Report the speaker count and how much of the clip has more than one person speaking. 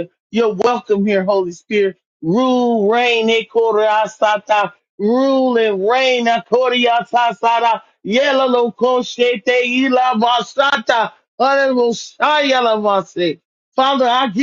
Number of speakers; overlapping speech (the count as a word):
one, no overlap